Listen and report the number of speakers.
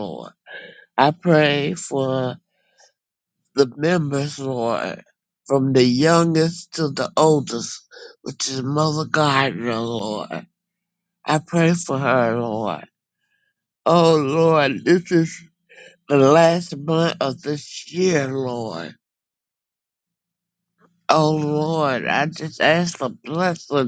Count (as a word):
one